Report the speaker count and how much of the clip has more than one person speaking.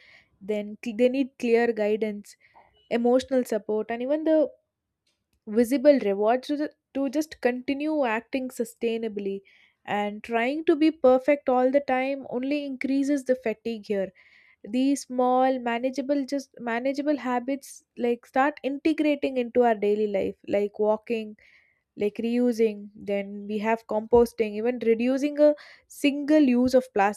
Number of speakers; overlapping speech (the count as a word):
one, no overlap